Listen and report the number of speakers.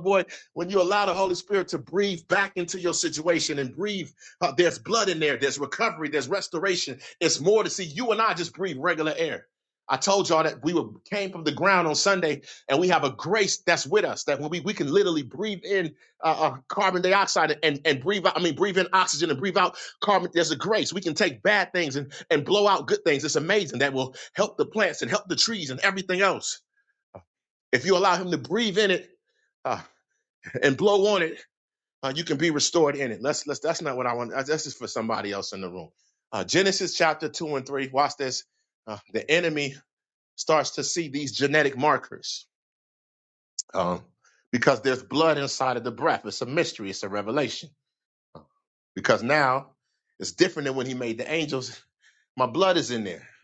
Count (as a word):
one